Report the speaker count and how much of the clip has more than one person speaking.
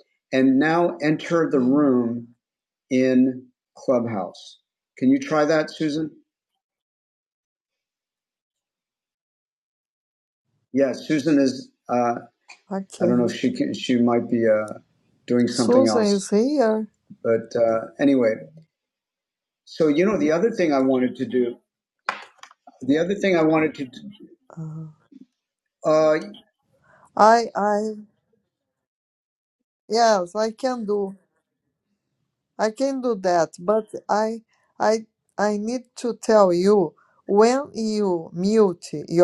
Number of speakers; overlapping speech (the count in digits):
2, about 1%